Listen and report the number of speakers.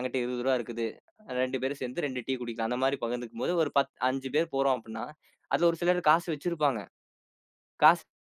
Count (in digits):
1